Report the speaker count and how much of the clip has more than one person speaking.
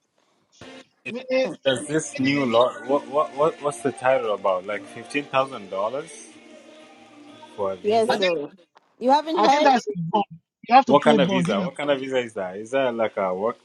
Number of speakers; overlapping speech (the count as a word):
three, about 12%